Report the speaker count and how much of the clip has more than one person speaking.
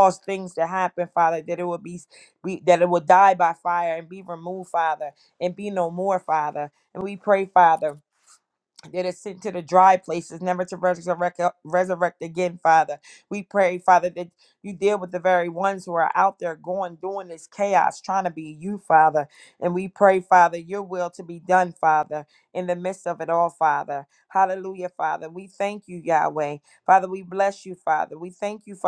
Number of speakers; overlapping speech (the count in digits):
1, no overlap